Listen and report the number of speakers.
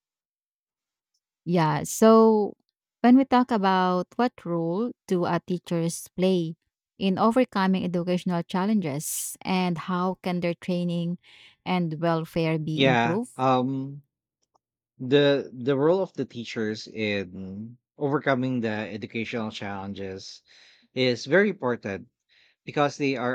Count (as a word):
two